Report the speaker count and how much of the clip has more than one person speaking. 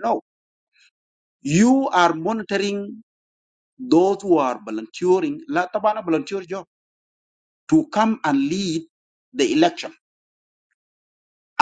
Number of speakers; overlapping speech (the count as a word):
one, no overlap